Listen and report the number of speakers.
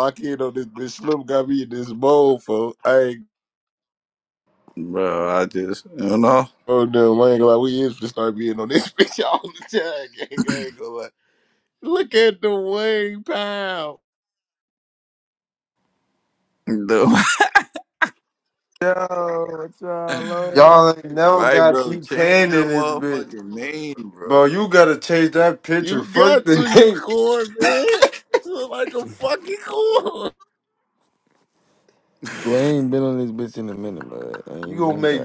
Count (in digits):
4